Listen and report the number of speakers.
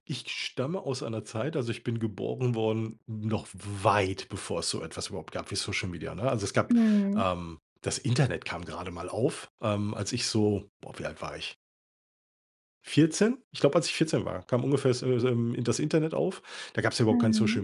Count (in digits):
2